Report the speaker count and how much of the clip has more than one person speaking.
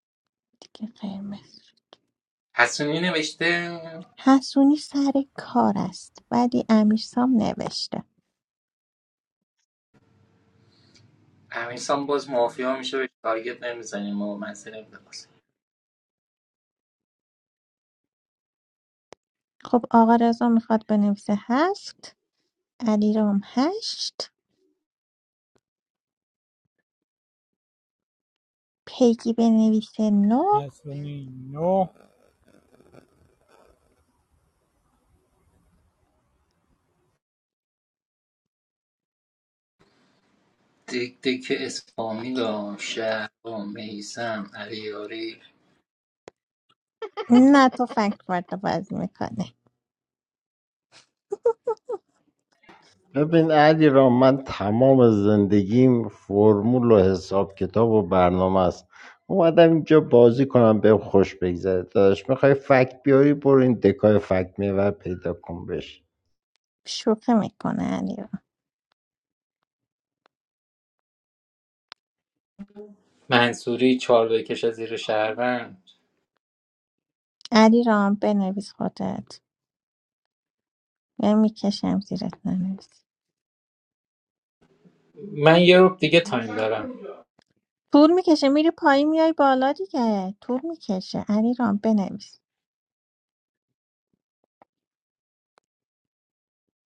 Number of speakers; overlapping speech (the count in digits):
4, under 1%